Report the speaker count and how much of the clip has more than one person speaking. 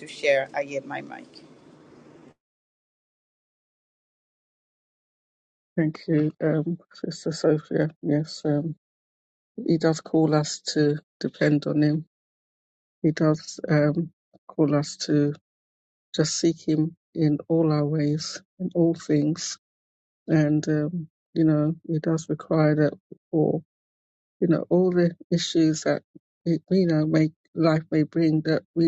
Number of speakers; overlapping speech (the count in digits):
2, no overlap